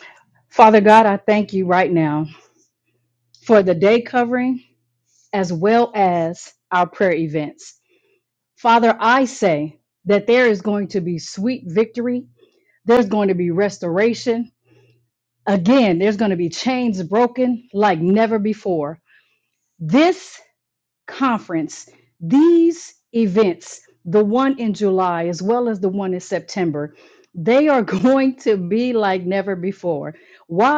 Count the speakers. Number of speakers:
1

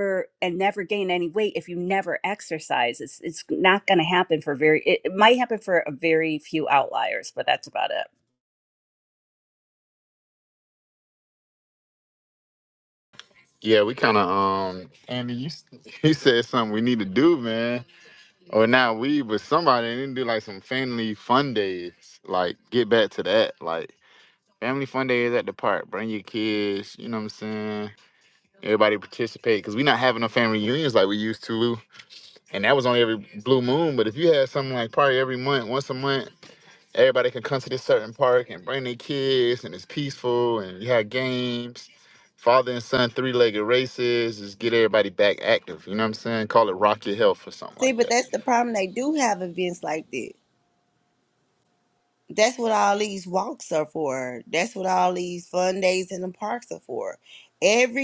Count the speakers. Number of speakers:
3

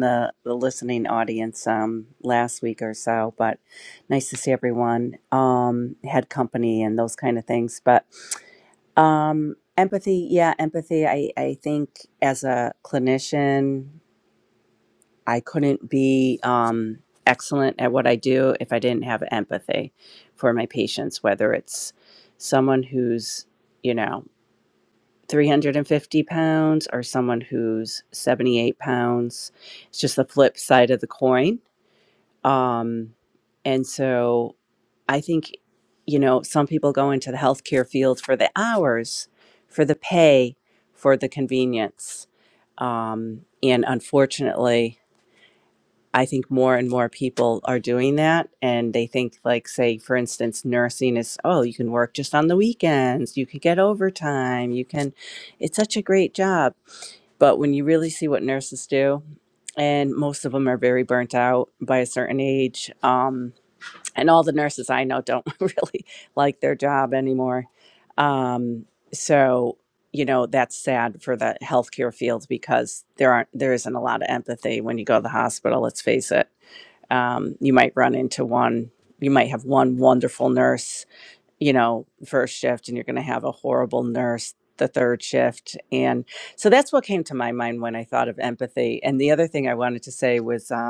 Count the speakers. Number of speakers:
1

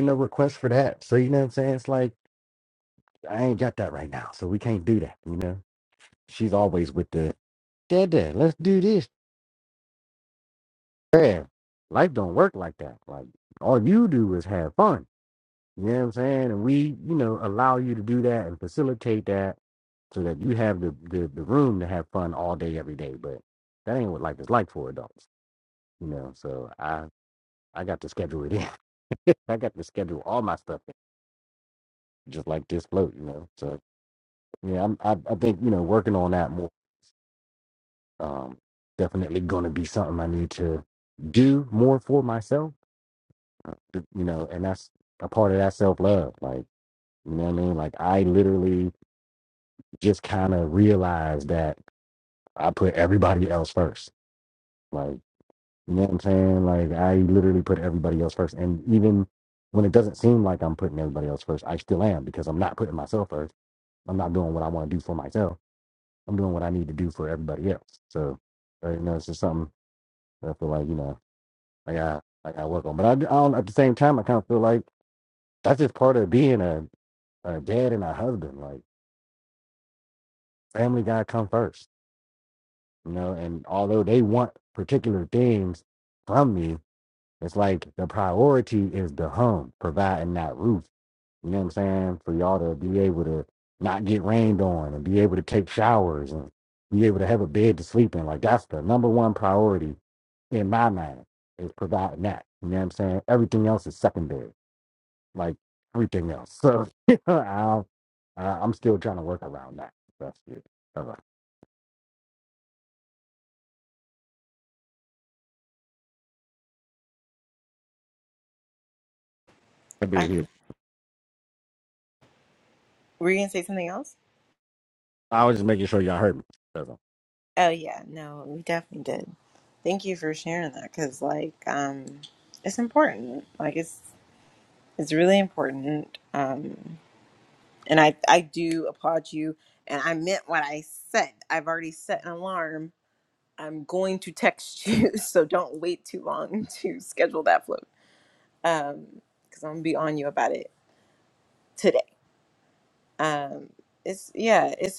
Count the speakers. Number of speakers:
2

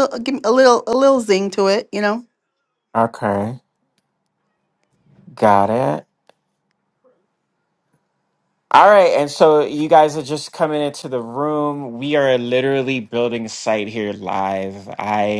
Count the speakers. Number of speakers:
2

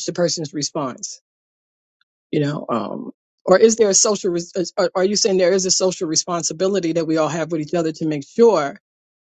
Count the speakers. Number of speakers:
1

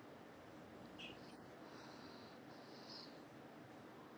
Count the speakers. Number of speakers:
0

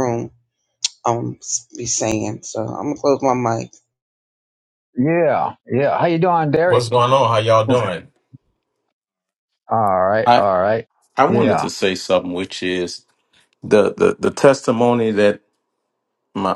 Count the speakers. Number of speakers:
3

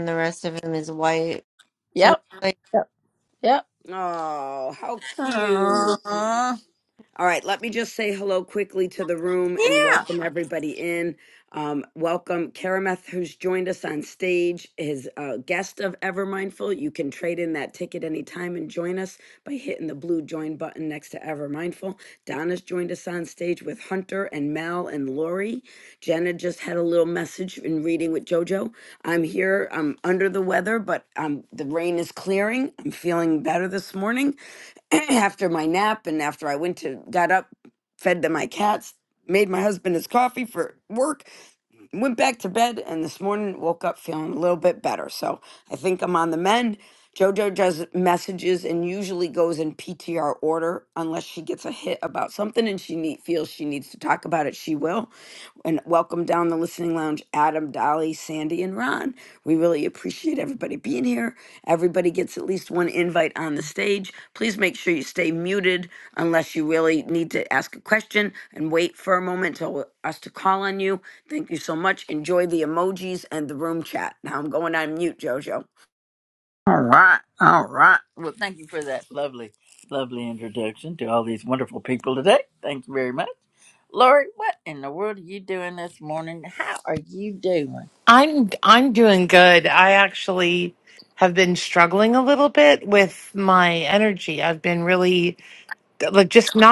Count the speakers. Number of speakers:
4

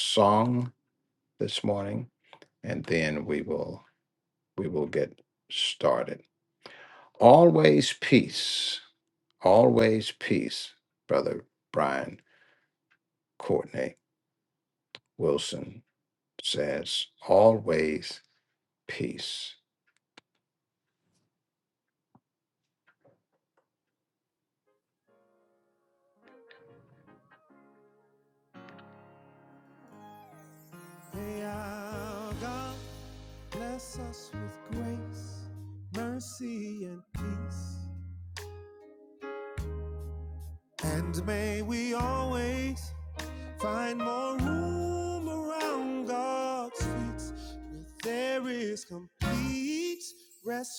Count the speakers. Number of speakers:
2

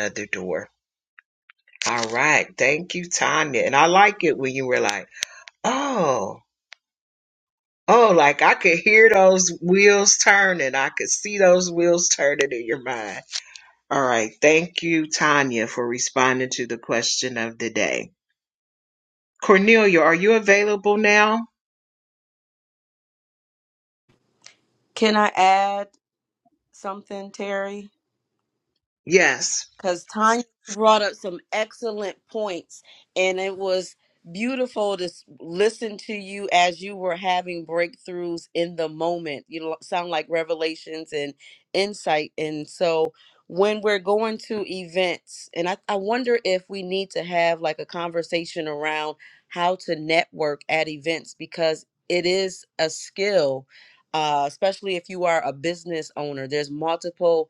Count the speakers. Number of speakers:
2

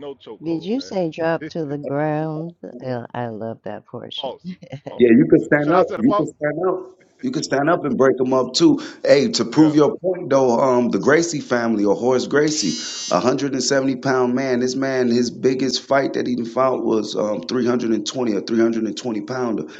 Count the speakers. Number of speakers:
3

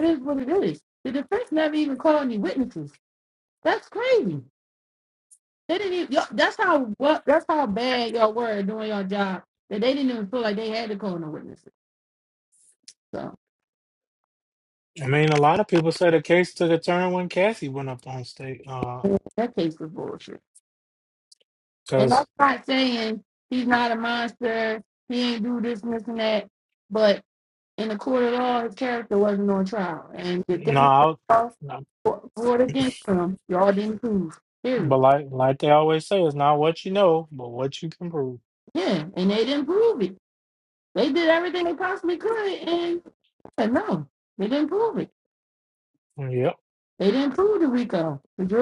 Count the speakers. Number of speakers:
2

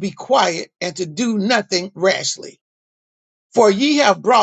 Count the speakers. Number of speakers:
1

